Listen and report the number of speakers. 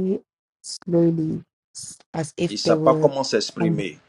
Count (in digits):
2